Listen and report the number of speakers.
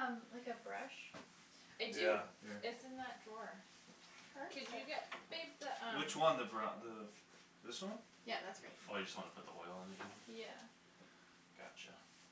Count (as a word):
four